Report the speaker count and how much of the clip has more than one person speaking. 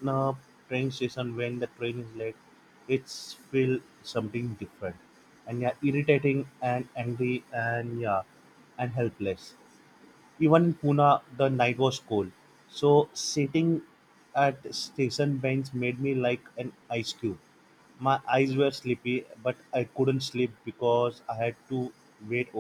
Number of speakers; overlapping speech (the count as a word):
one, no overlap